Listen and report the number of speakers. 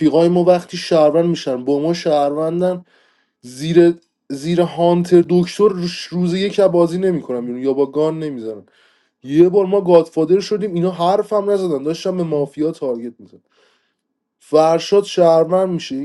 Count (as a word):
one